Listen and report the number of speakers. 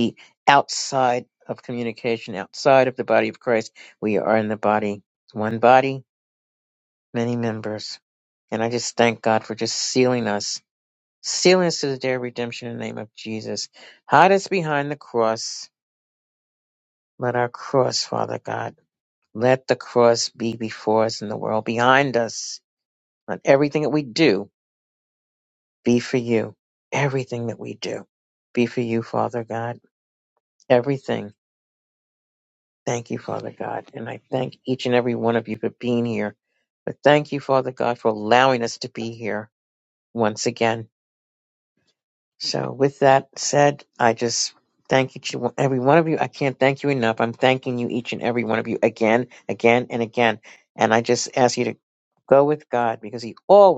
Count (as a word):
one